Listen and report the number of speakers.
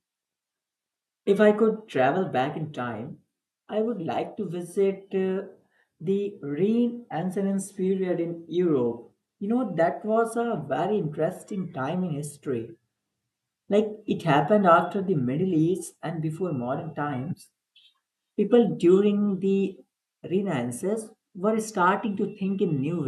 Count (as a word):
one